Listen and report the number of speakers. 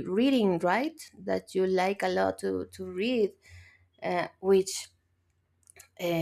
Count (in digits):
1